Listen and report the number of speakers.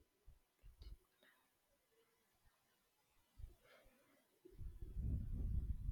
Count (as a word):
zero